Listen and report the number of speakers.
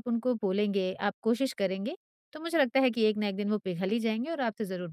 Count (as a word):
one